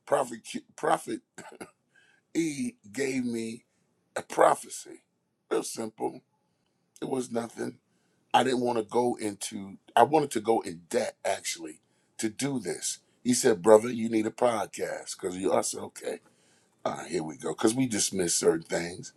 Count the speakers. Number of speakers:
one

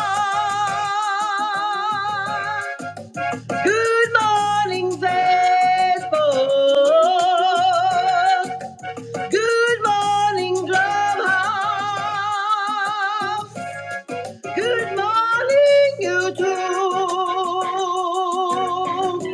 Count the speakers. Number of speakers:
one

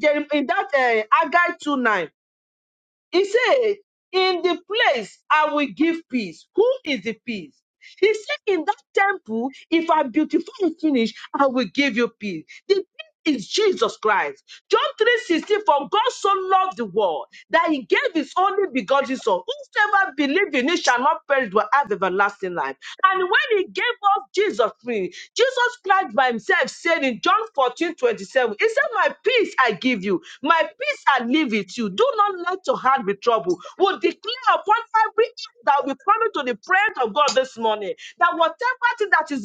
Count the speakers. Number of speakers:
one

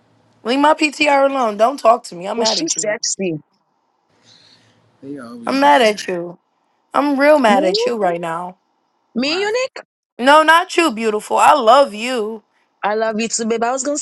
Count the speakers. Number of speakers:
three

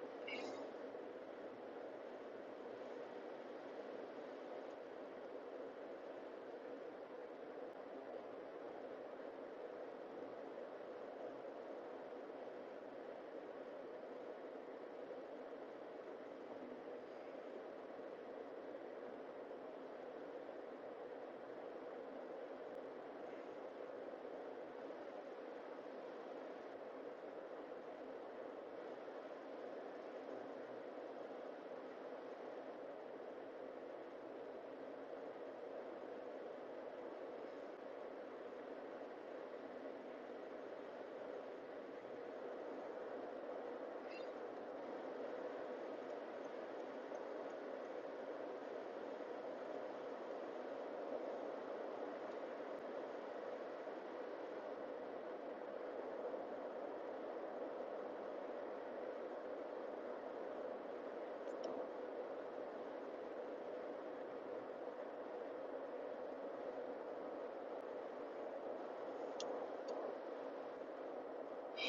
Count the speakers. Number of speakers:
zero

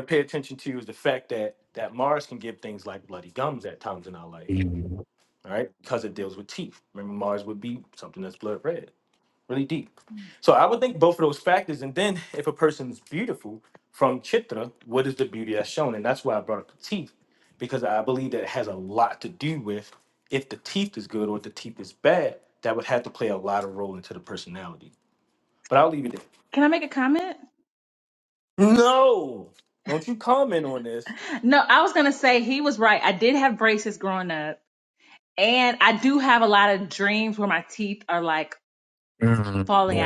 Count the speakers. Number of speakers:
three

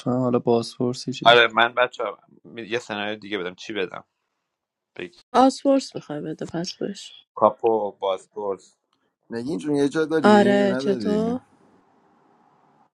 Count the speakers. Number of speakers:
four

